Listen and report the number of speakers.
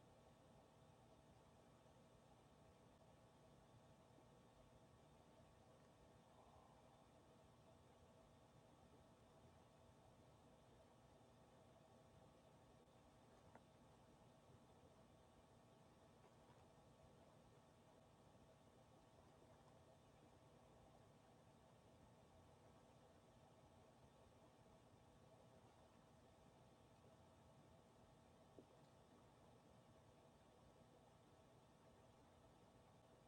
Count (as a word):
zero